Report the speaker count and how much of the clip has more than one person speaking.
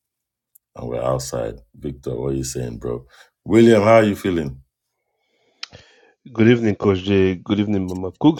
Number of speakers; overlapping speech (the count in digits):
2, no overlap